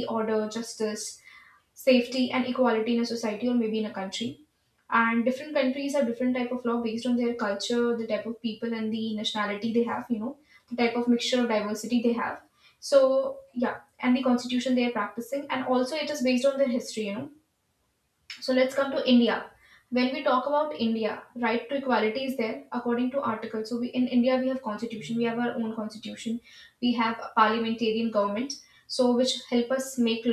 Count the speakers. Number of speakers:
1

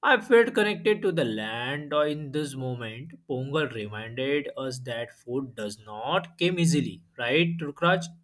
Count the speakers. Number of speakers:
1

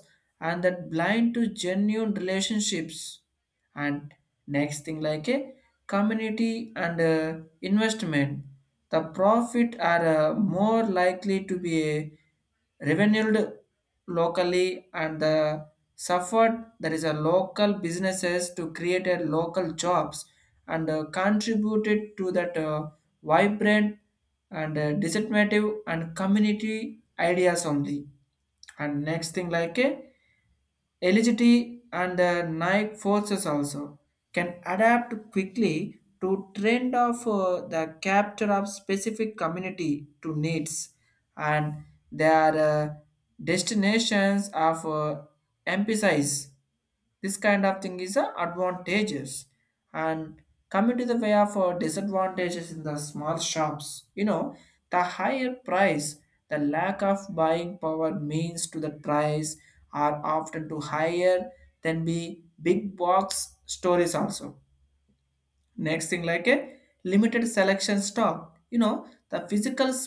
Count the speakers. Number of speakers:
1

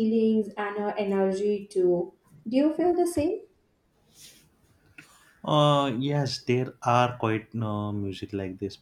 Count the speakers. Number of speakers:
2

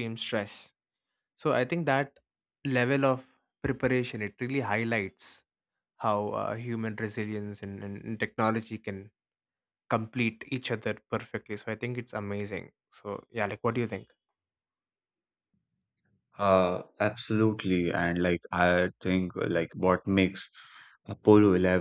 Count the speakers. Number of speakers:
2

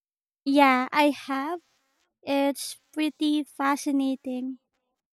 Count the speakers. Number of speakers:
1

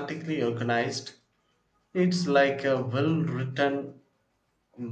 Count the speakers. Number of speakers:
1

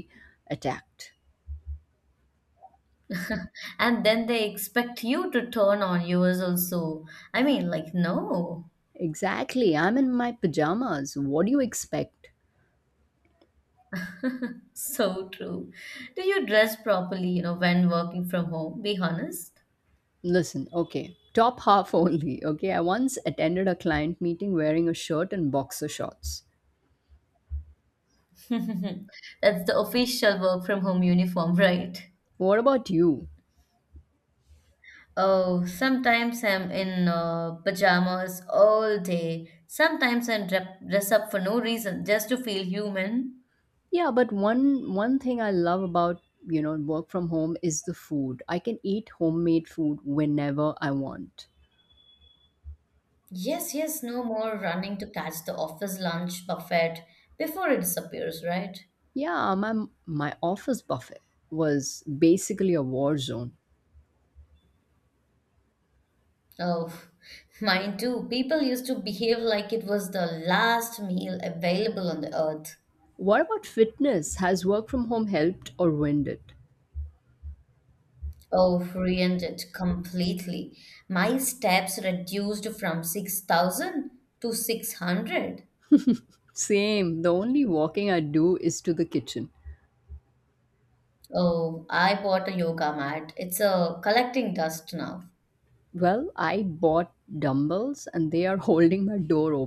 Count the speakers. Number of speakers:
2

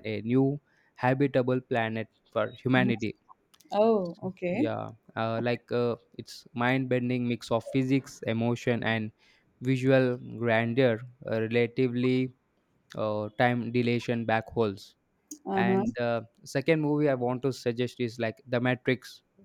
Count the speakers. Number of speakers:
2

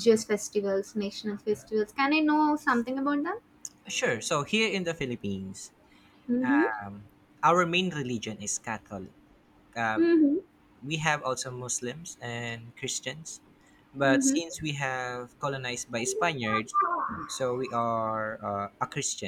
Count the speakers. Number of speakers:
2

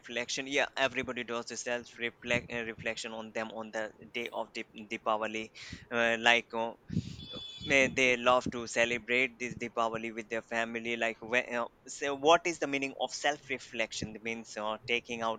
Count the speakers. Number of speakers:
1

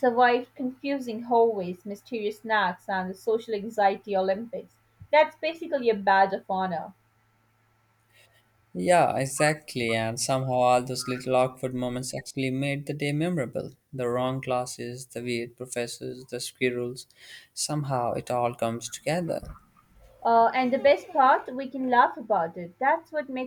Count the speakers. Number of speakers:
2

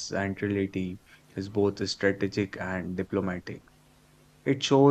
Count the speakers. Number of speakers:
1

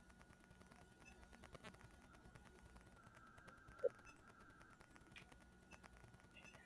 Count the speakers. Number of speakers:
0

